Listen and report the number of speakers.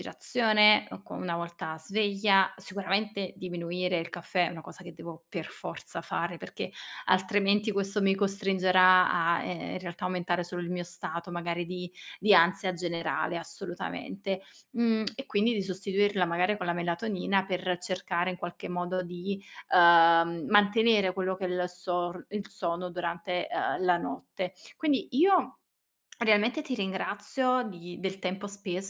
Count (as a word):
one